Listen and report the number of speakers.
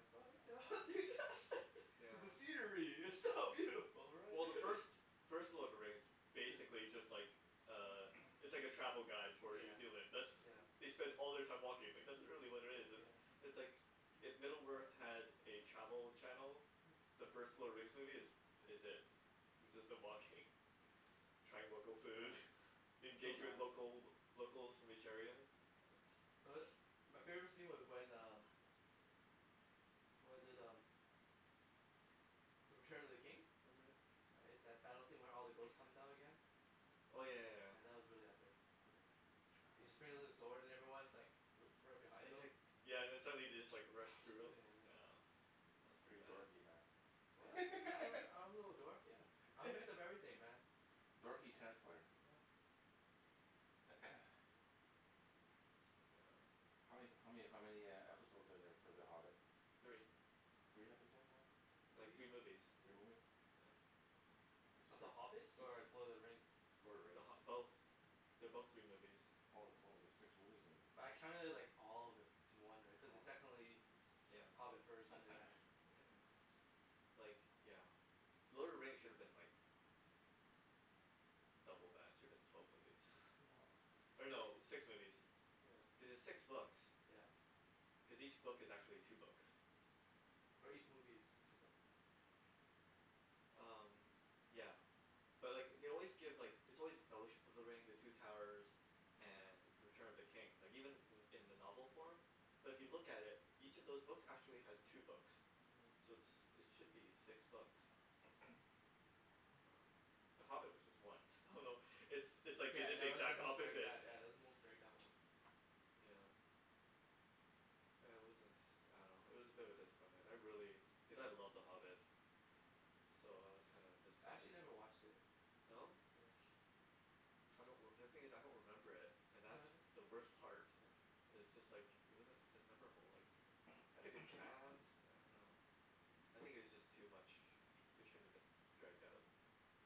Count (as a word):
three